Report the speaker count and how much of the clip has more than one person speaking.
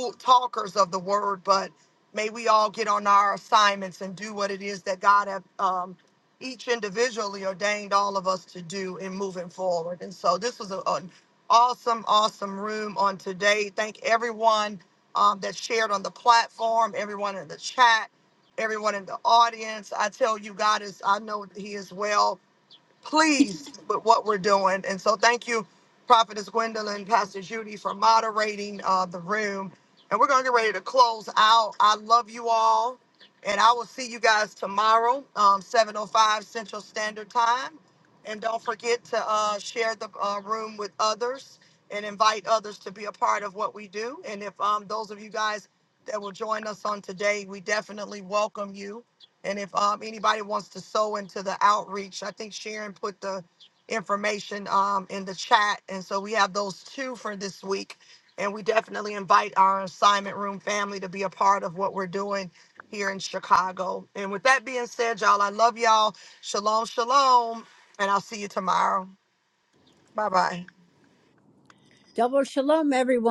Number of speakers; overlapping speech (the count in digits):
2, no overlap